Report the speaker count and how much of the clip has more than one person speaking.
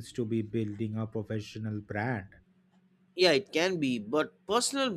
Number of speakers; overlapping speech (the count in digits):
2, no overlap